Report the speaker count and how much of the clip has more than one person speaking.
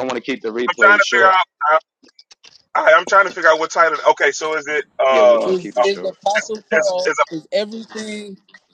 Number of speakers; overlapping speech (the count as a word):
three, about 30%